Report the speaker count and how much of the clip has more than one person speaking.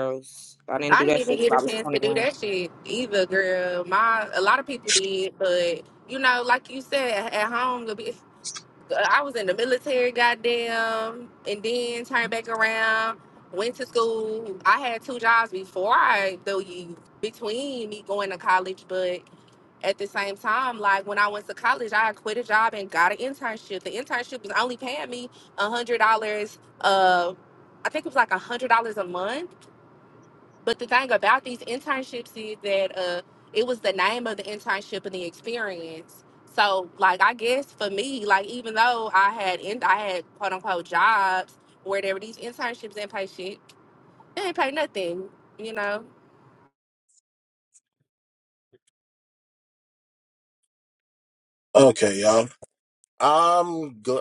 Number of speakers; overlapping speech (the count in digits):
3, about 3%